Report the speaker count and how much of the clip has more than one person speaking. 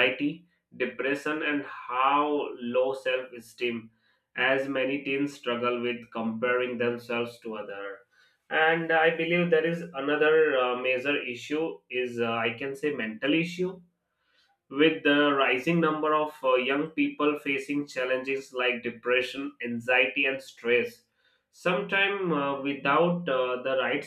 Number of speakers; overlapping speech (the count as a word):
one, no overlap